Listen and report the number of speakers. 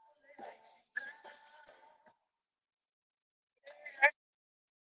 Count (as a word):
zero